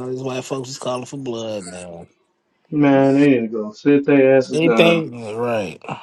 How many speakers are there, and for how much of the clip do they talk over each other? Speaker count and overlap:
2, about 8%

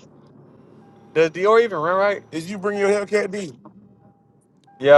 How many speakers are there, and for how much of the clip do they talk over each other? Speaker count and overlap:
2, no overlap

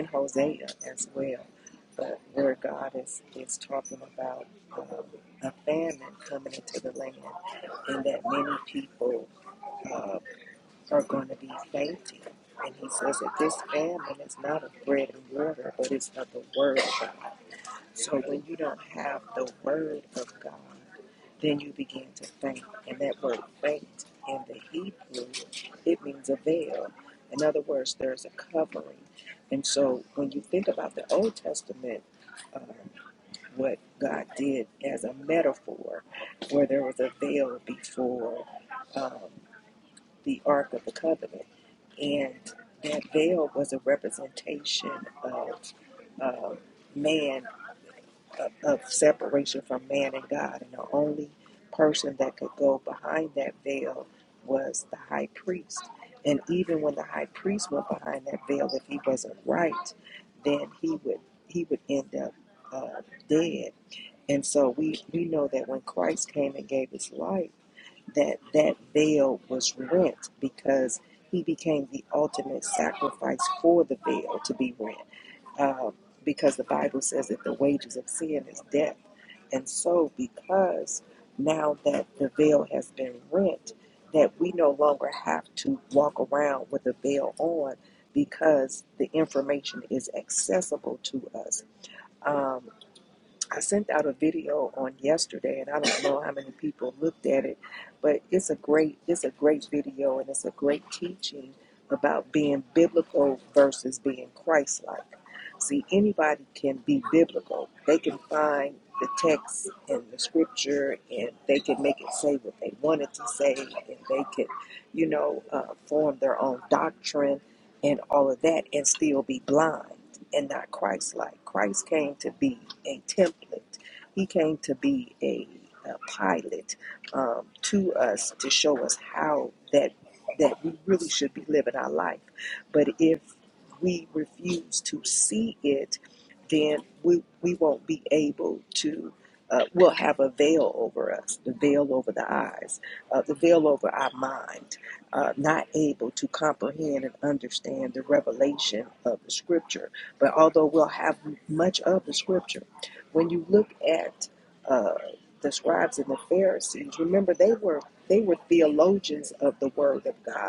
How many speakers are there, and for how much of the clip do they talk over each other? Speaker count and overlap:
1, no overlap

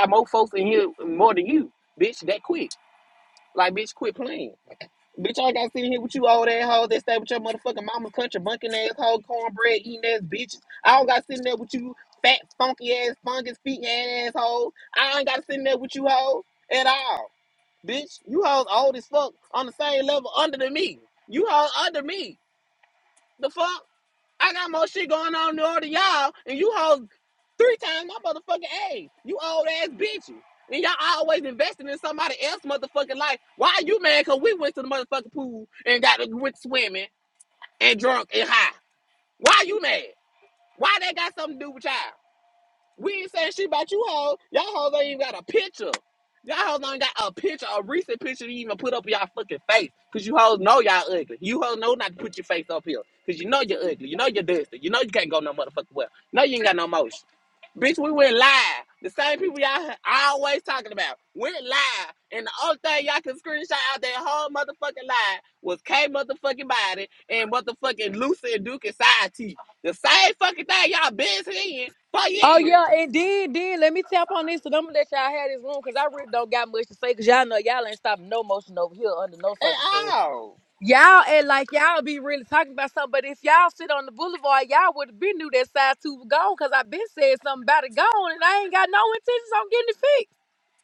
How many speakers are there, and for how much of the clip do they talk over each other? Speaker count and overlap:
2, about 1%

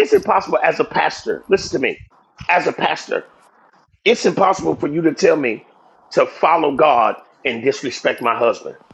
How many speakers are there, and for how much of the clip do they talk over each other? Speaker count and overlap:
1, no overlap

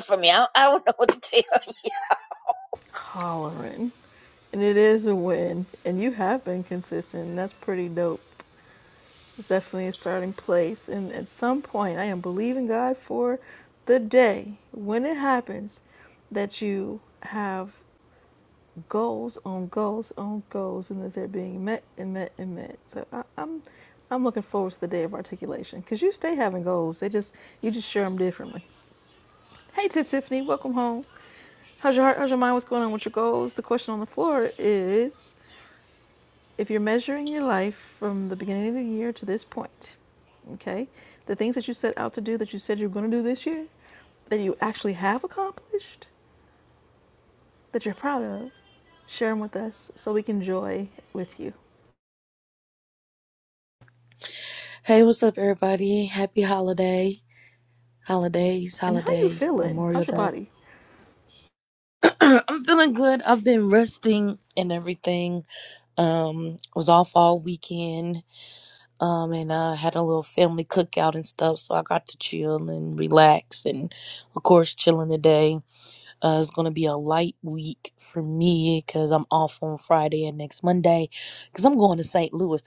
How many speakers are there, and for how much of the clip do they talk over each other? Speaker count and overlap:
3, about 2%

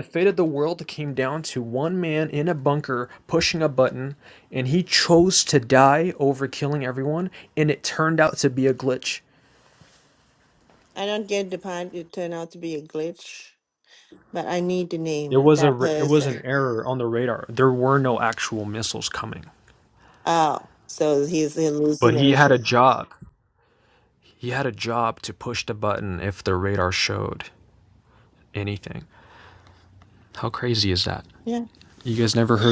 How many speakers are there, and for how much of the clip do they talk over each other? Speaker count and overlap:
2, about 5%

